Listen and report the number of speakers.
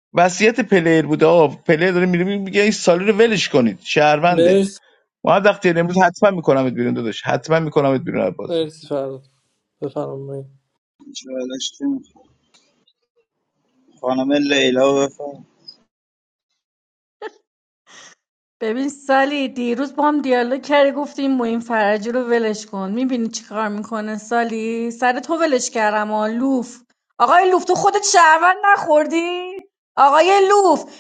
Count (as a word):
four